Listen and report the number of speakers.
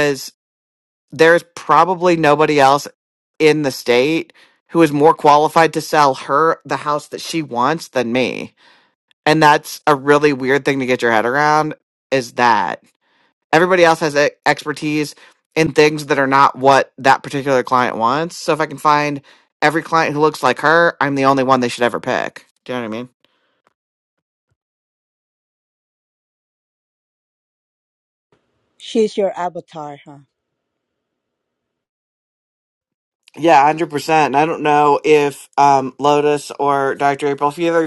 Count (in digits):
2